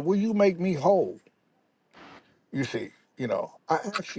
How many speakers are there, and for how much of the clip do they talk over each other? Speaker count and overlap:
one, no overlap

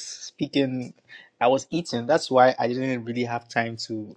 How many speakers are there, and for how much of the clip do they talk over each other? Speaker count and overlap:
one, no overlap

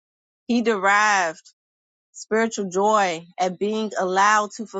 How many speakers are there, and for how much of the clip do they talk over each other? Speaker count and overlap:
one, no overlap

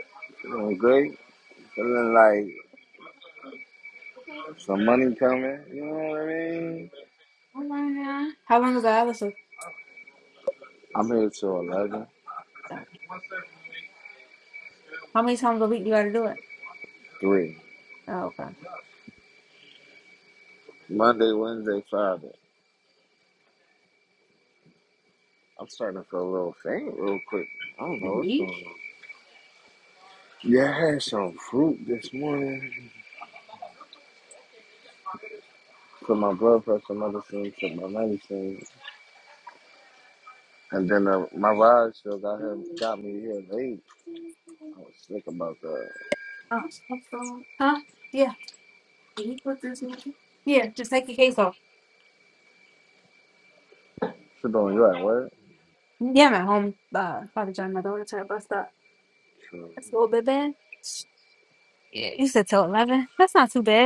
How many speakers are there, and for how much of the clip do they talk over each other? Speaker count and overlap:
two, about 1%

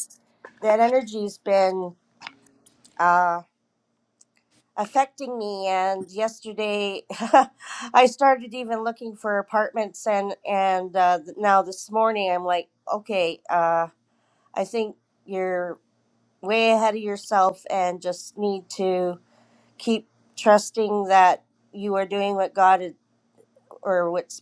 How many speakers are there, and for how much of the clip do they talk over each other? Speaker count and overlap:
one, no overlap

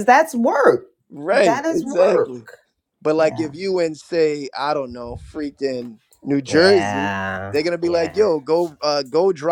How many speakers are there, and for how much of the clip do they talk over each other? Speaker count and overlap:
two, about 29%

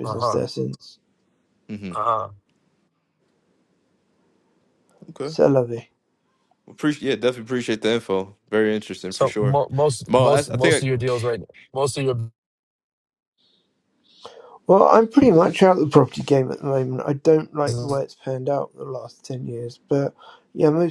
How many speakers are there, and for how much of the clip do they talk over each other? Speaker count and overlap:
three, about 9%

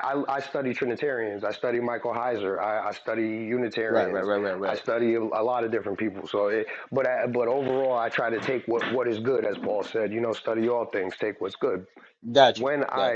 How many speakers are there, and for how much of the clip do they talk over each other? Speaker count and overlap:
two, about 6%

